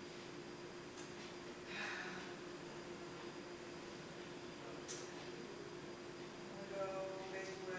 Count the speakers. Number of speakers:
1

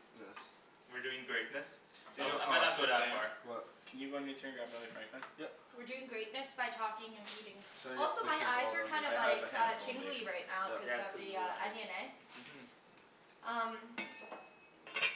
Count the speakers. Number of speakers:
4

